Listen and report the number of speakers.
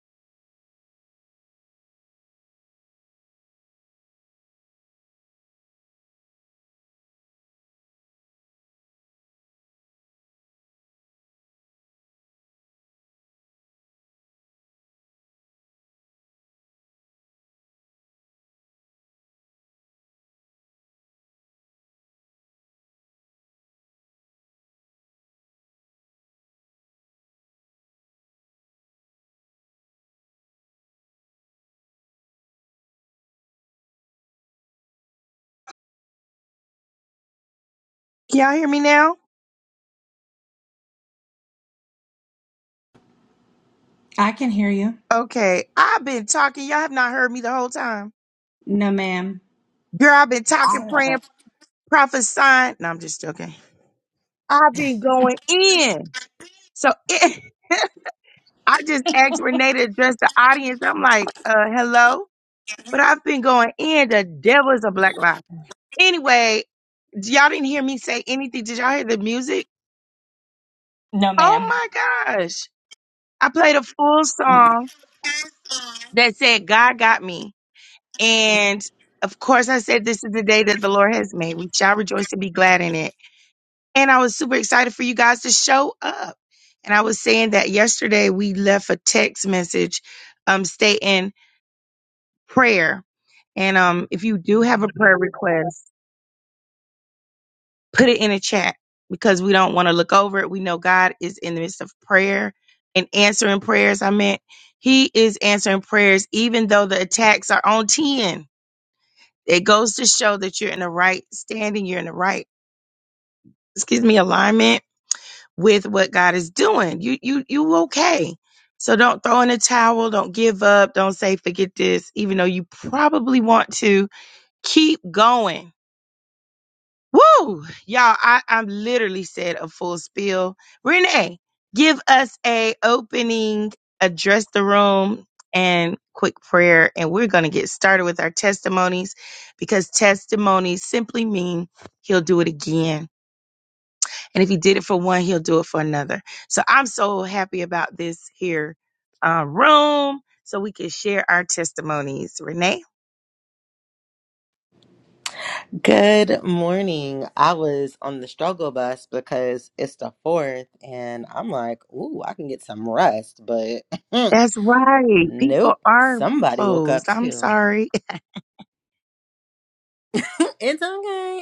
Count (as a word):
three